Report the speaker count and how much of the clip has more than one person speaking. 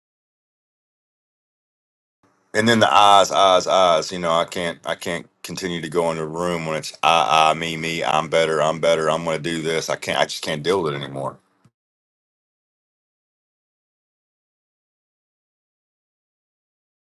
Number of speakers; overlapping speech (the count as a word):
one, no overlap